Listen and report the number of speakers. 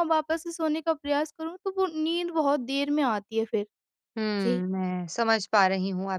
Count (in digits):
2